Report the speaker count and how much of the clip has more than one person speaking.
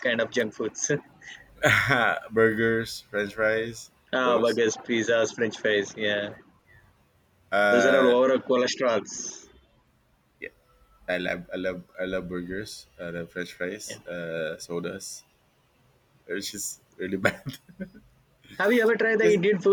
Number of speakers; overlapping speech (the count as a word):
two, about 5%